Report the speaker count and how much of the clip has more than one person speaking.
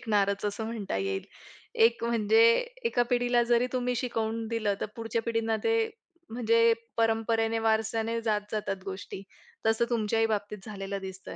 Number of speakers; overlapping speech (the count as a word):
one, no overlap